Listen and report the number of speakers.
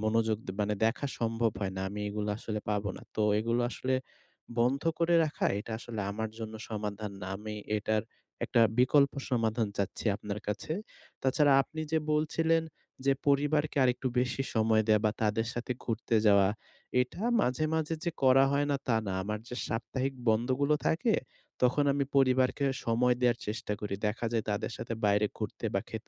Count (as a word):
one